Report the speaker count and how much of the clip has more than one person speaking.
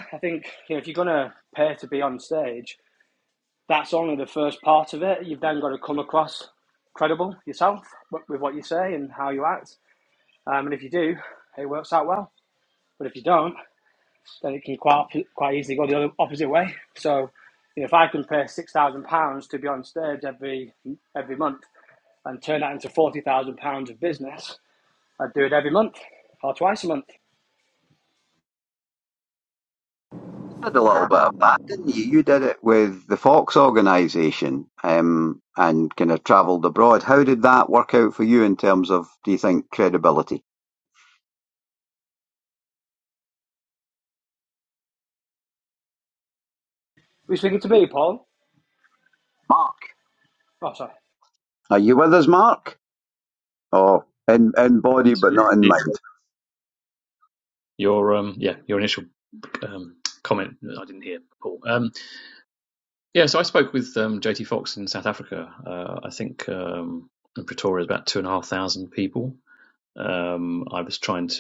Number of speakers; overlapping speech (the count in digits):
3, under 1%